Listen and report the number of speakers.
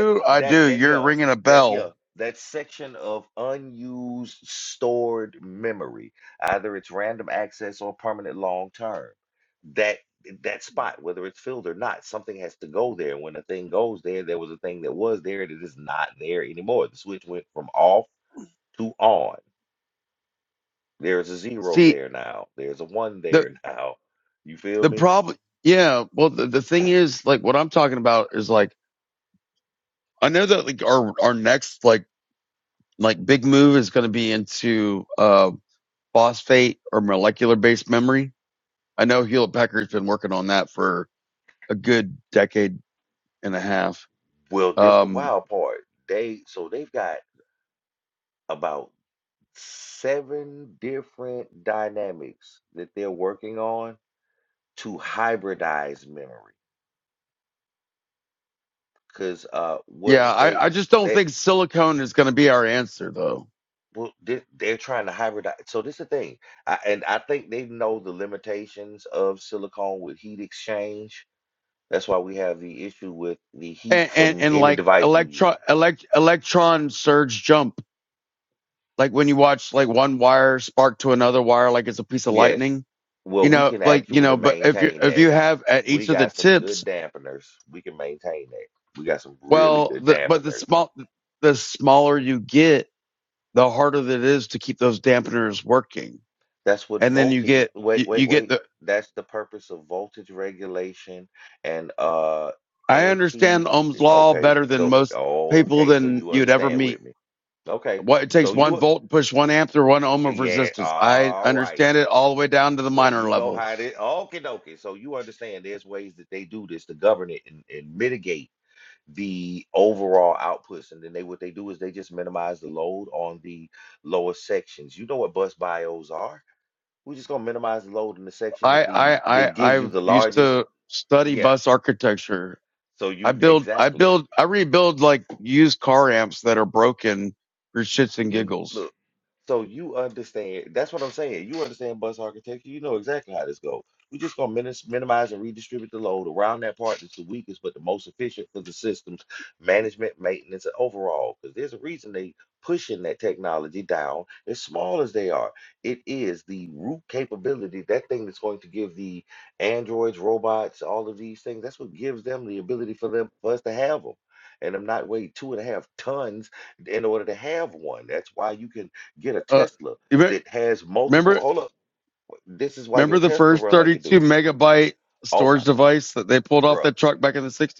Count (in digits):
2